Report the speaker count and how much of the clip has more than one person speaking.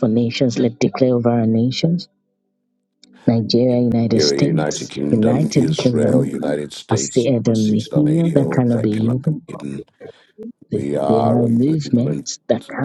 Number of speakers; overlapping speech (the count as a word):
two, about 46%